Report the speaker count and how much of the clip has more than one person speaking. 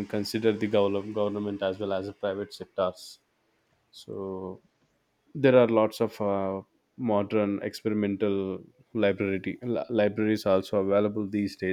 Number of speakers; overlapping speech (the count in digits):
1, no overlap